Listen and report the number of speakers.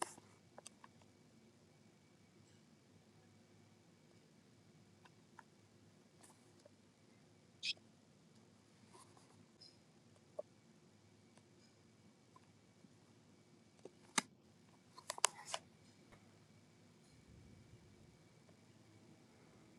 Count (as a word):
zero